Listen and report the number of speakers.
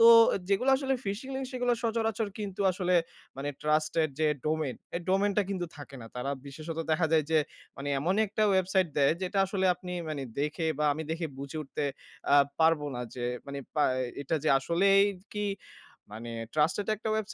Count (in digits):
1